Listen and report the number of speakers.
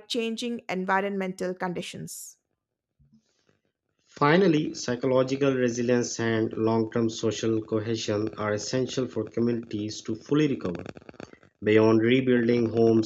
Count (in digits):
2